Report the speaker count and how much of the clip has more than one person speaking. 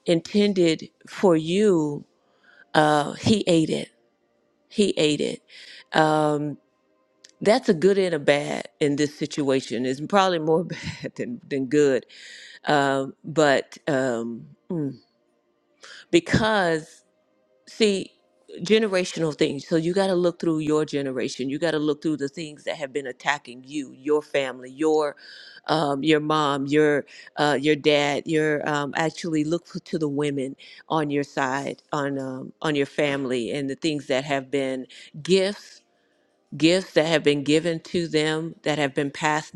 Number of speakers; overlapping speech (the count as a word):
one, no overlap